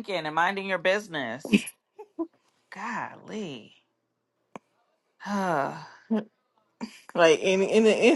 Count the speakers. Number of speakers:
2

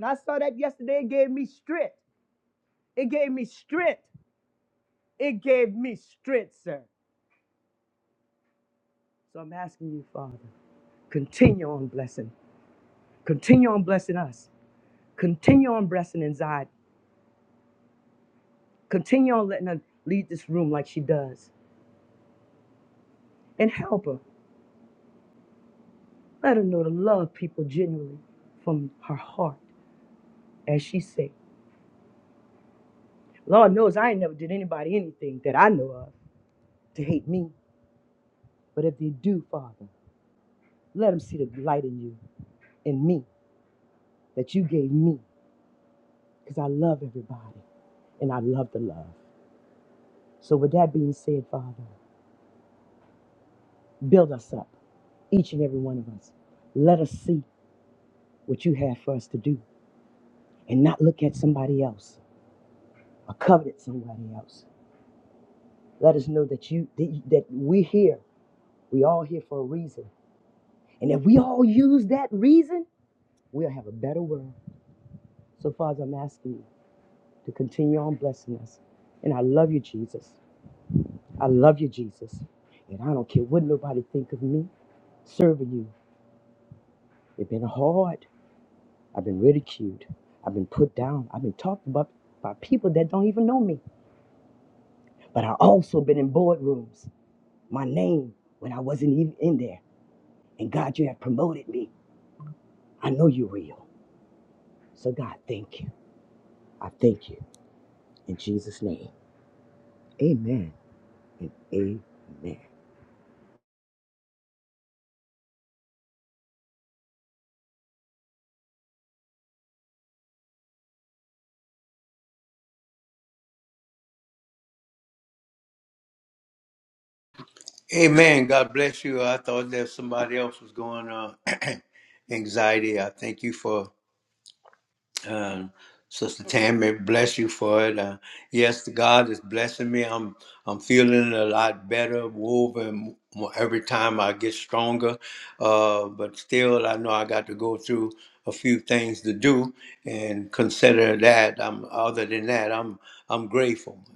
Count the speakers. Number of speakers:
2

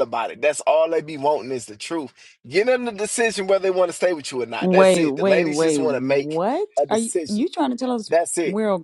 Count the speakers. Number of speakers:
2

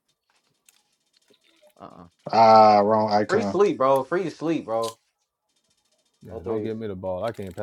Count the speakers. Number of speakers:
3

